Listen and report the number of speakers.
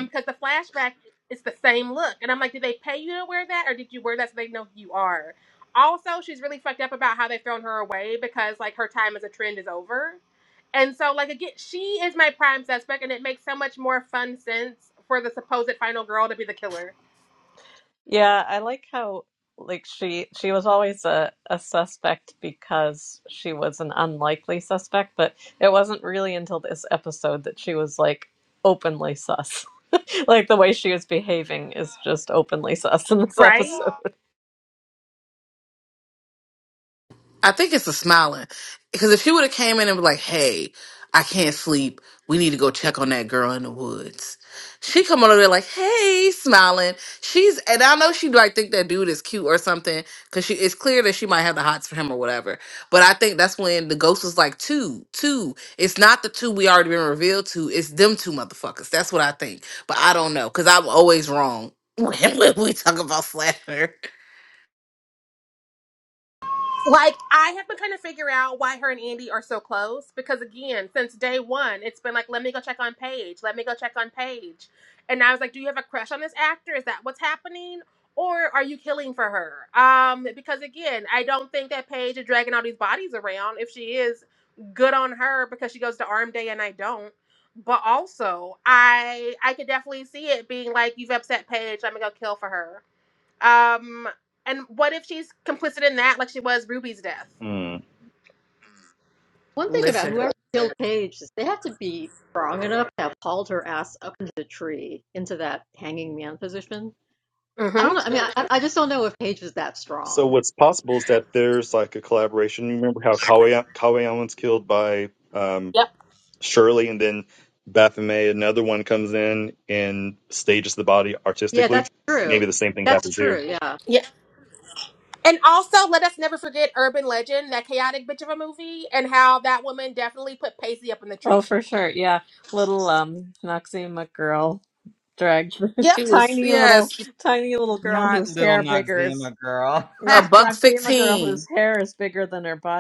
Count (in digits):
6